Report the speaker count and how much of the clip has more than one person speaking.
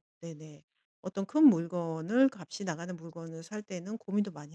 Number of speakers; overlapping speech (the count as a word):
one, no overlap